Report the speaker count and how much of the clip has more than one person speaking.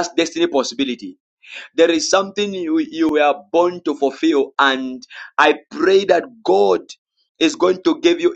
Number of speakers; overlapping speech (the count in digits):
1, no overlap